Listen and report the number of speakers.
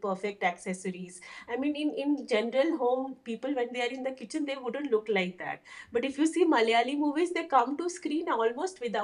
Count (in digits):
1